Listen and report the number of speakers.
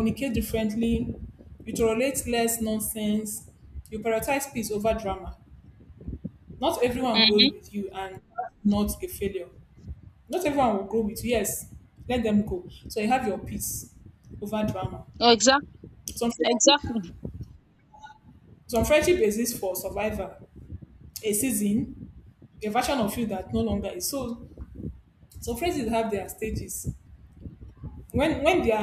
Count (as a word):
two